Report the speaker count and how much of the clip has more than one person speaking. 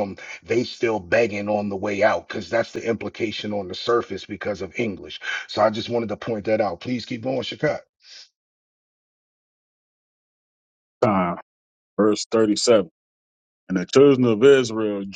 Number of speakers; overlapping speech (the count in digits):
2, no overlap